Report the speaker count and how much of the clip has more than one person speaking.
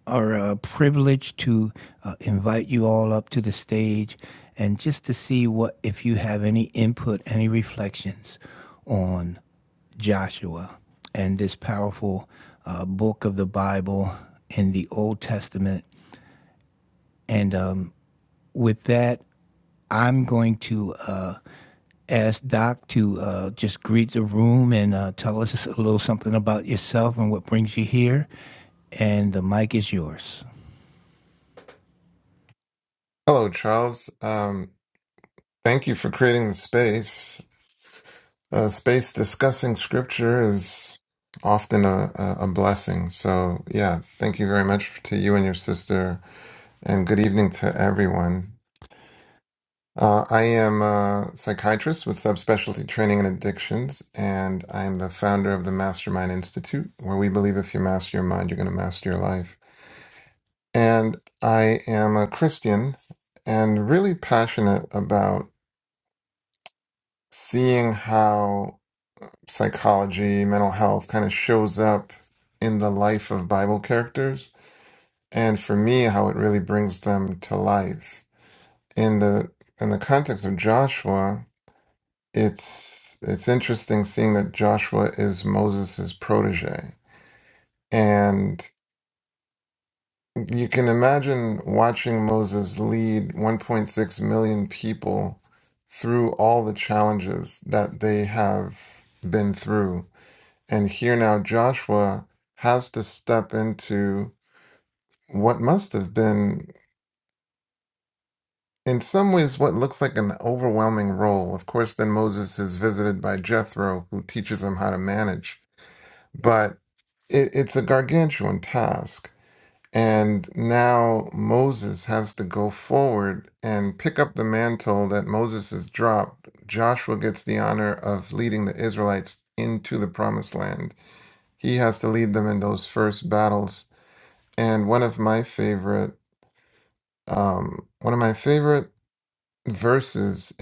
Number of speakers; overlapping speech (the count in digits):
2, no overlap